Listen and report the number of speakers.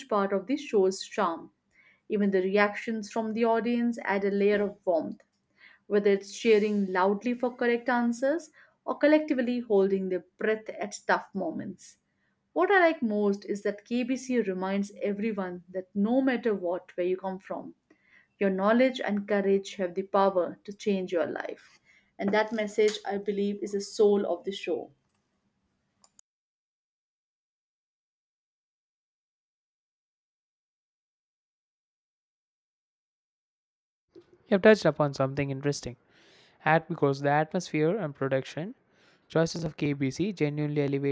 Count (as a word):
two